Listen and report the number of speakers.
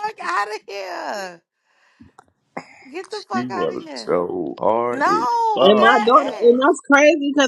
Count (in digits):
3